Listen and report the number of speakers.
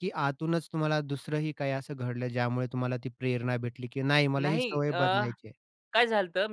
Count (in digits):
2